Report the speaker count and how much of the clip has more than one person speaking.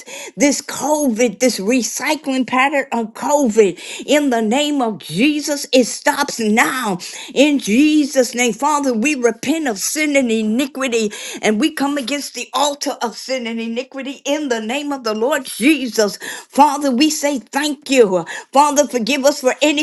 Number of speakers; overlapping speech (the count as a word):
one, no overlap